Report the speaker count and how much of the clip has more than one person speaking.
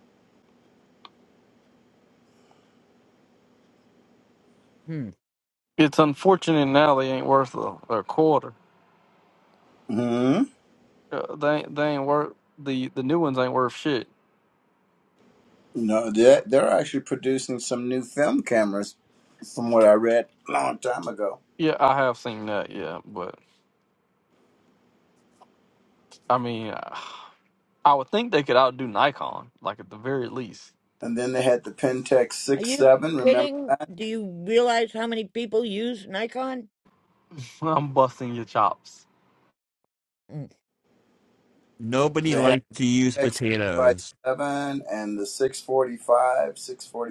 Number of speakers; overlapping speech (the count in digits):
4, about 3%